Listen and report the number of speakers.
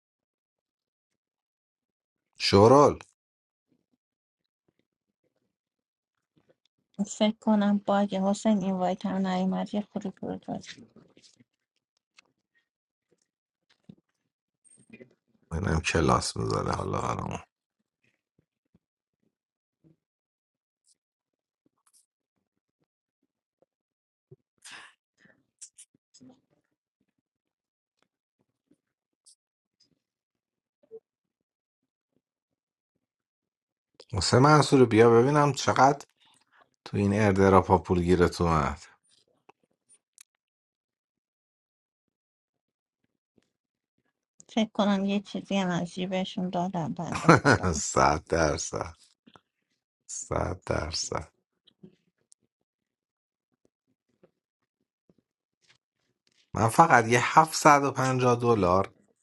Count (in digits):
2